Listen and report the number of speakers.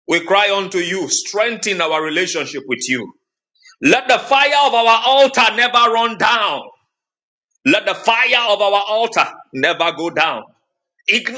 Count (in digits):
1